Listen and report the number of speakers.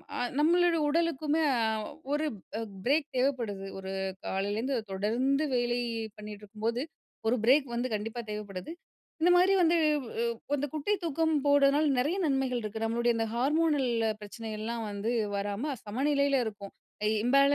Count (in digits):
1